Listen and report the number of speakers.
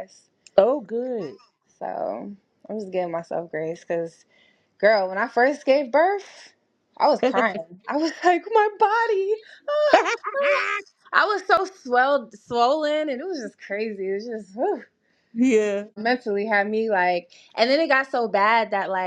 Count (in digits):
2